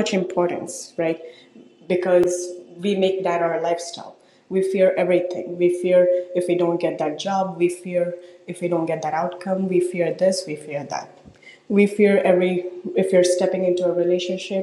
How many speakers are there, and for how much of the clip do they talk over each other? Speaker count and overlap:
one, no overlap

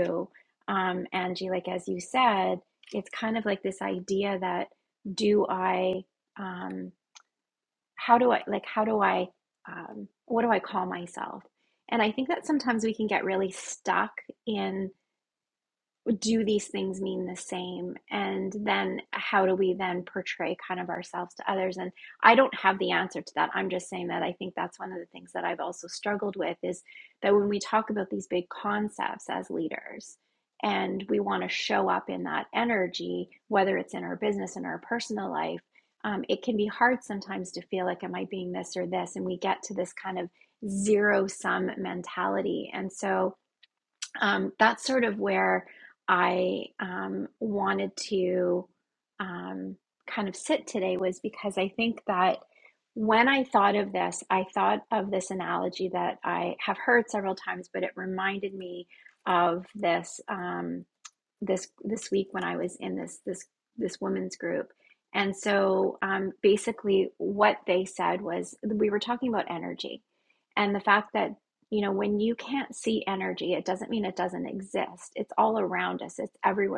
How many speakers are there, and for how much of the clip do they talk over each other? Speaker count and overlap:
one, no overlap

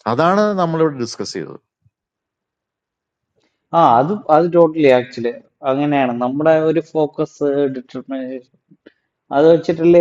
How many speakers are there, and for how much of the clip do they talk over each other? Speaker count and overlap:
two, no overlap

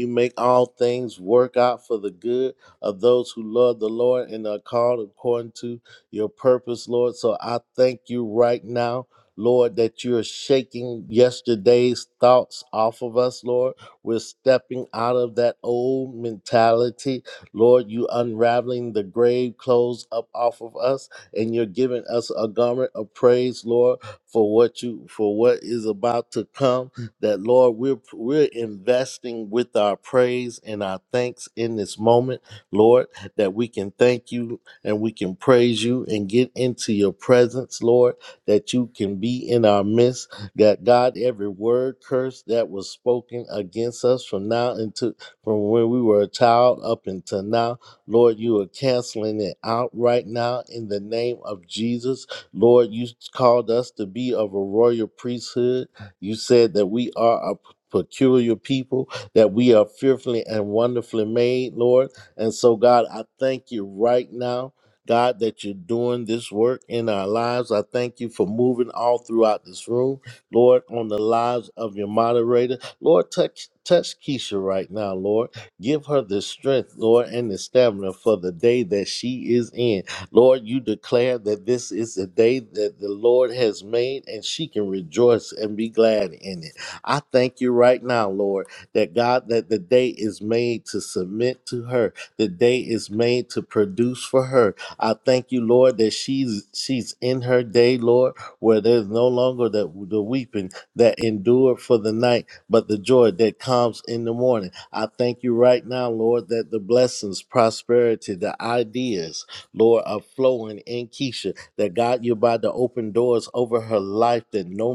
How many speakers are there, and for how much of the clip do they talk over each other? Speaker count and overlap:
one, no overlap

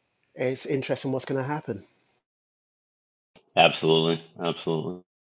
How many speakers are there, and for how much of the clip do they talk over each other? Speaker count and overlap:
two, no overlap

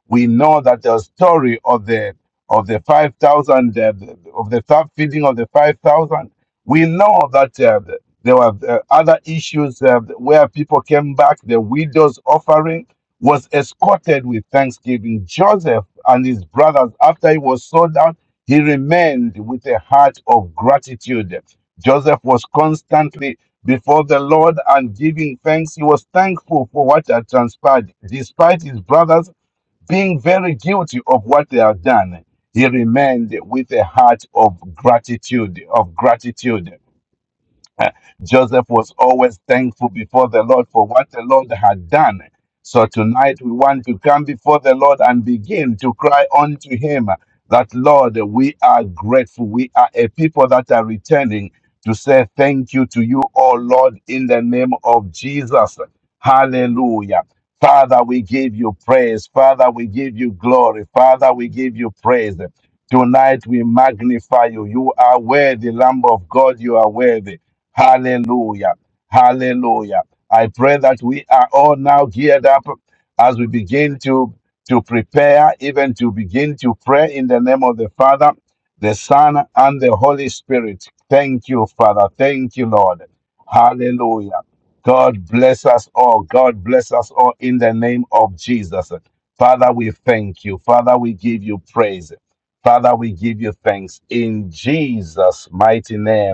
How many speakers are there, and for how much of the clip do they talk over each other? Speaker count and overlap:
one, no overlap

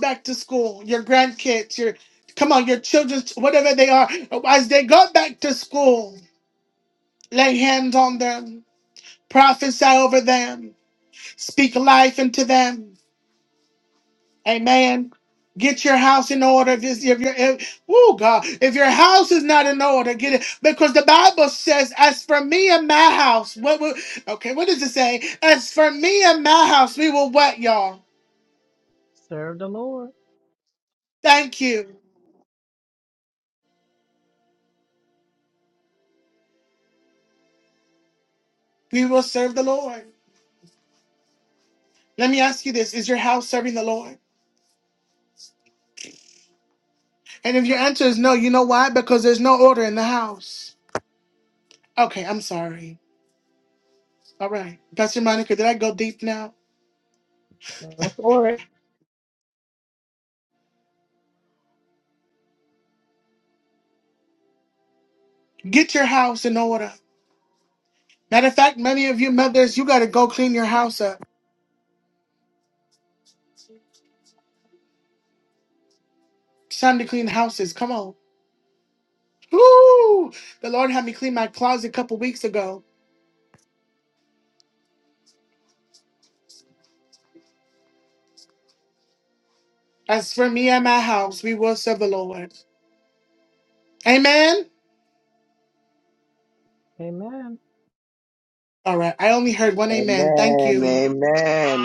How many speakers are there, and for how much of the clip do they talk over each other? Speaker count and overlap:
three, about 1%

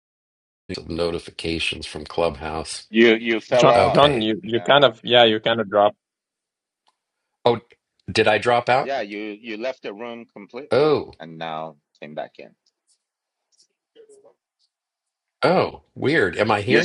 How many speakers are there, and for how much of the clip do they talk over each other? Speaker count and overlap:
three, about 11%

